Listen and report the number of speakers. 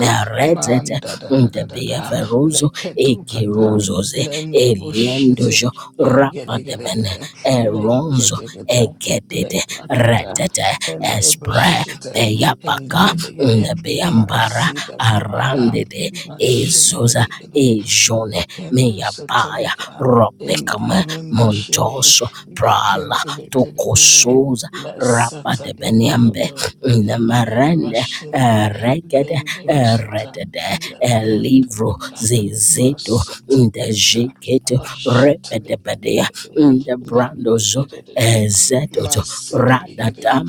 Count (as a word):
two